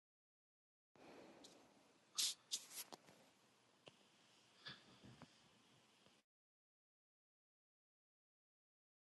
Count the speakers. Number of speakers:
zero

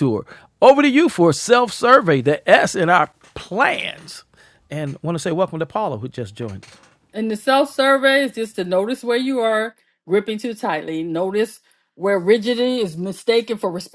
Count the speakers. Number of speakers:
two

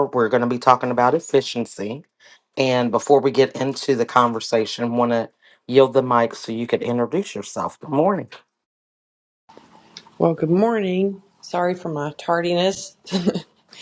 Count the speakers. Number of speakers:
two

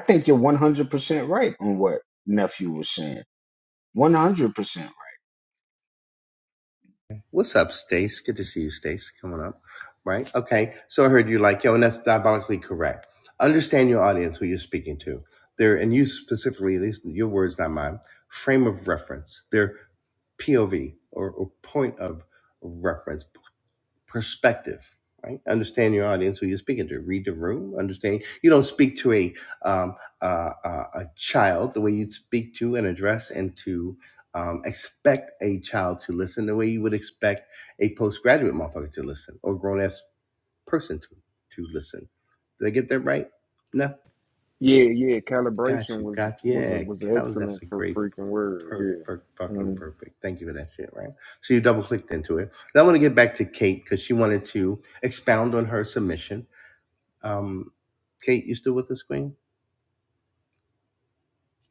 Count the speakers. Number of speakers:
three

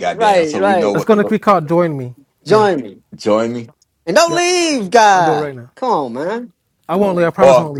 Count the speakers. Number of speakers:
three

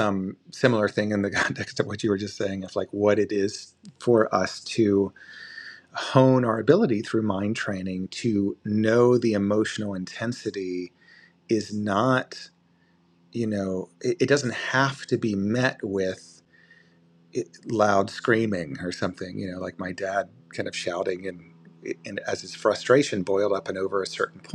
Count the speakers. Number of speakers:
one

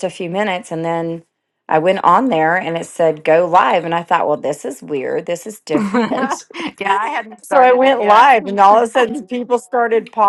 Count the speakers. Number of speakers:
two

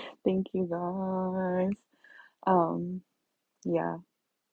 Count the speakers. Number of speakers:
one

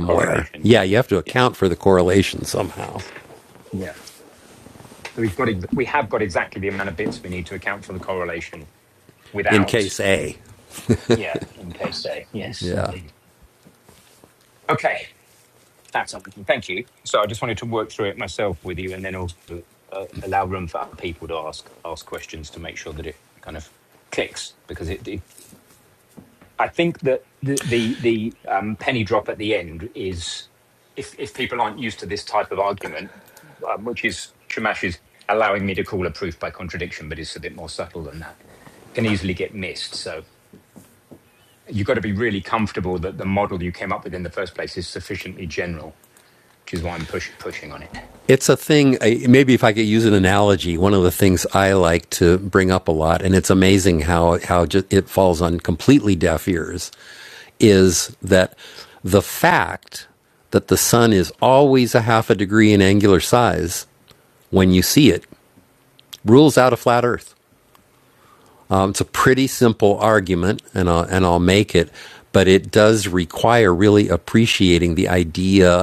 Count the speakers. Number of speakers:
two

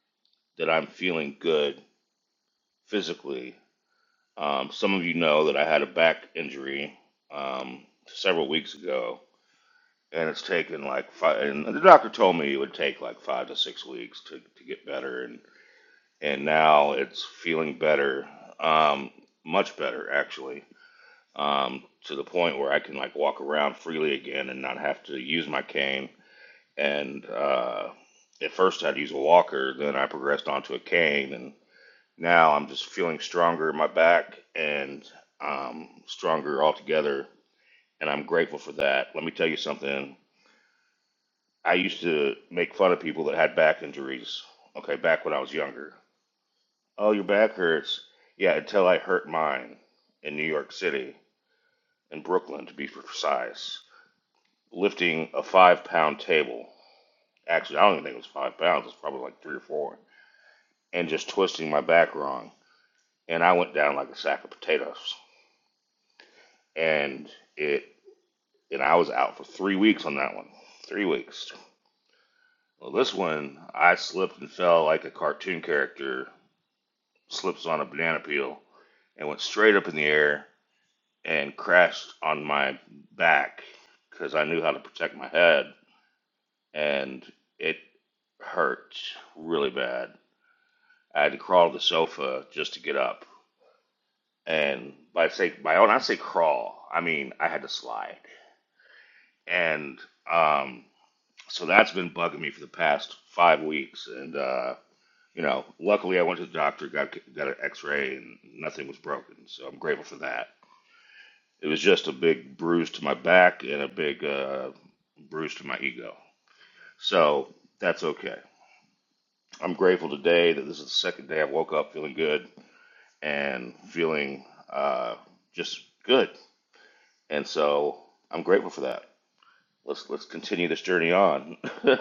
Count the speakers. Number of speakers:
one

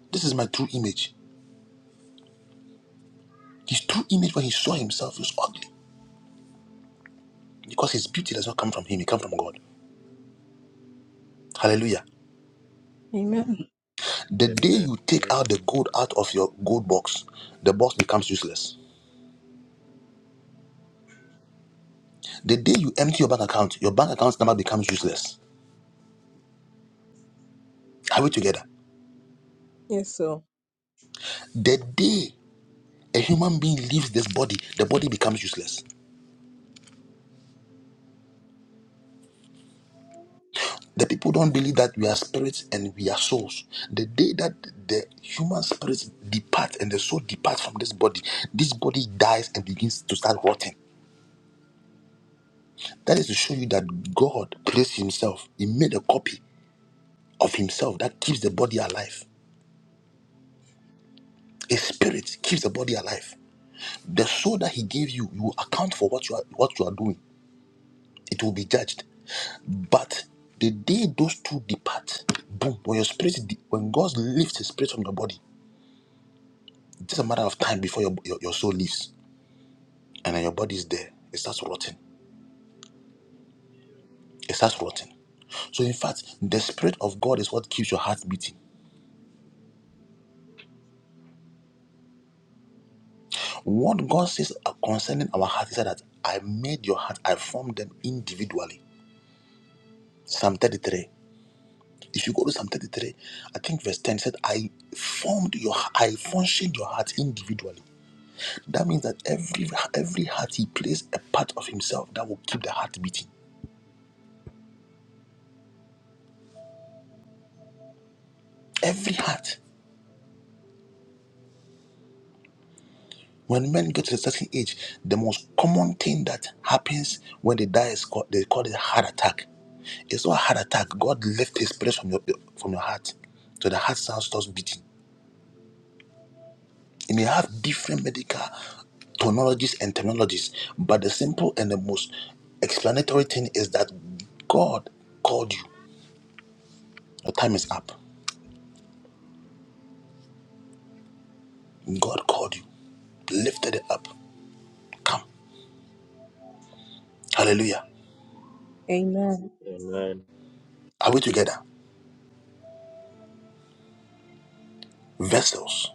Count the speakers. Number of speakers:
three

